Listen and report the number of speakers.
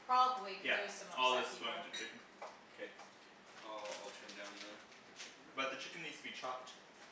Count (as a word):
three